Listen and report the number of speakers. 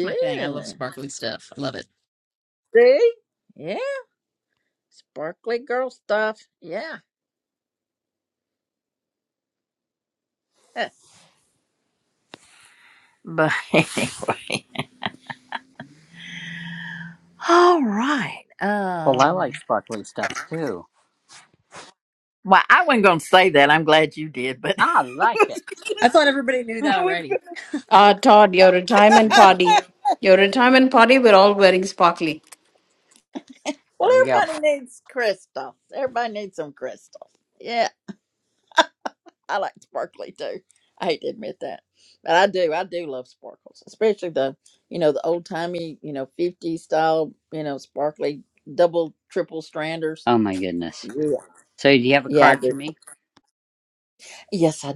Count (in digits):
4